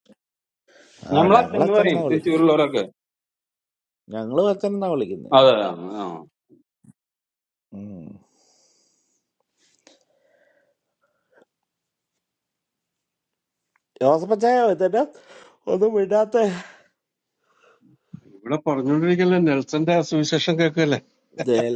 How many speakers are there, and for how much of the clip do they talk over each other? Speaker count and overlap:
3, about 6%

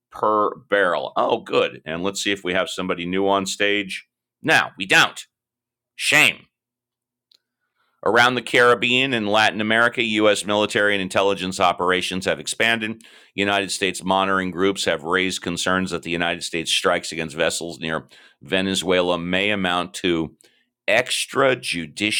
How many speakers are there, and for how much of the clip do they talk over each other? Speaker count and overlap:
1, no overlap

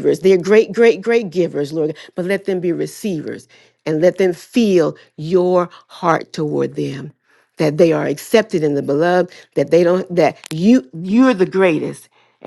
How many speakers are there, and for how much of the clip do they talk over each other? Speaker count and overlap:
1, no overlap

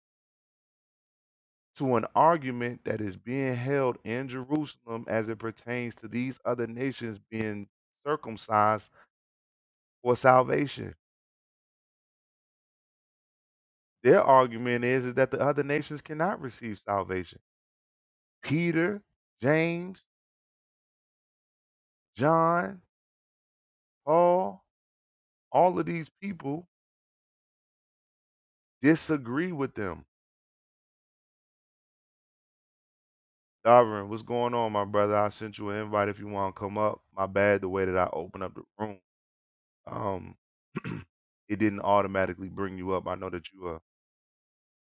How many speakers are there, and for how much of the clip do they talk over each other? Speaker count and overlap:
1, no overlap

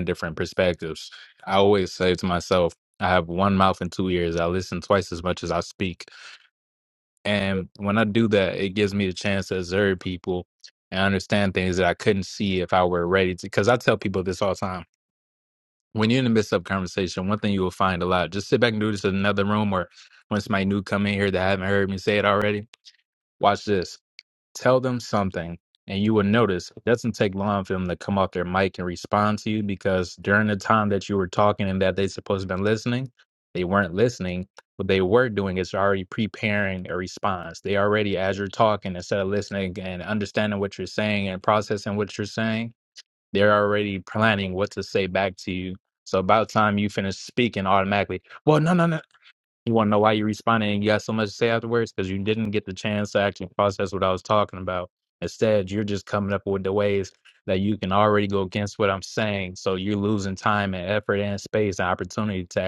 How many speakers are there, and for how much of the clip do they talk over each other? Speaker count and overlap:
1, no overlap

